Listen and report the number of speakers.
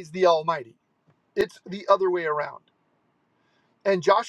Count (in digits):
1